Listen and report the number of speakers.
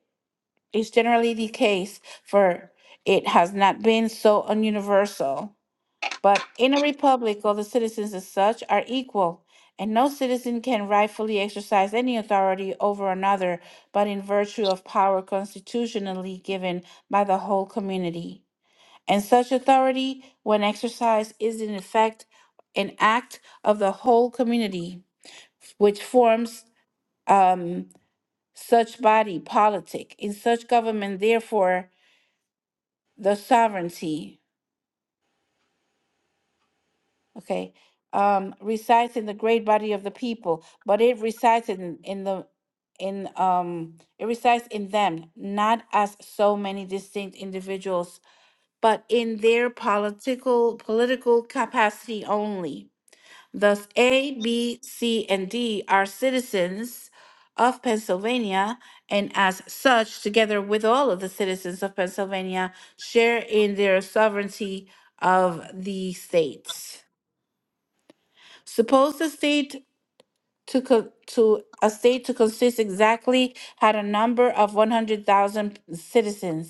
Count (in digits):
1